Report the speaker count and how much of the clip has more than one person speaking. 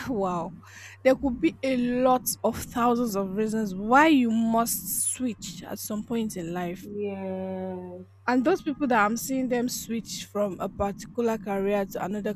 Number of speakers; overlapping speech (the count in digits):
2, no overlap